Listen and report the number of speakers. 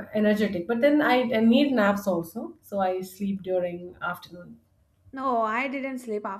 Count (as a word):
two